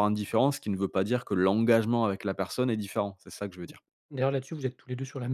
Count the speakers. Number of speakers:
two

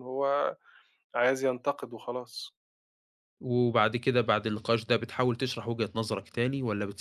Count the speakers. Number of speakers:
two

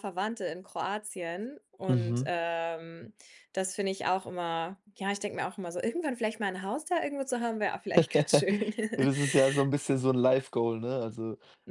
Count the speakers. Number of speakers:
two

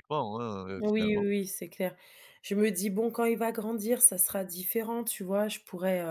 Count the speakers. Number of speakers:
two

